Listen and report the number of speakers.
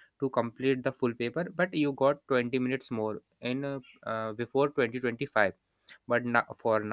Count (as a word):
one